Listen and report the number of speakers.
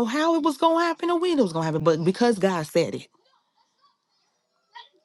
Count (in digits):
1